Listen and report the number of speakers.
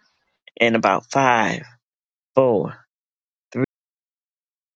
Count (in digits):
1